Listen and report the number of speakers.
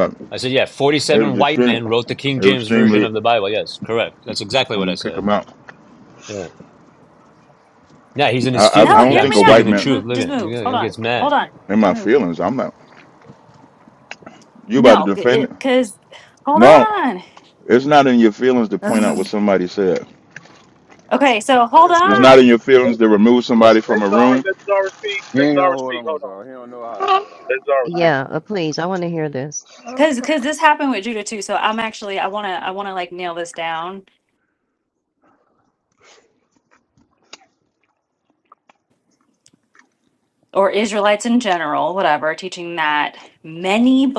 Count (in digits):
6